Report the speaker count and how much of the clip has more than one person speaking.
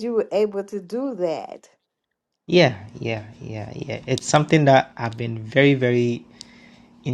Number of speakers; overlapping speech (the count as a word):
two, no overlap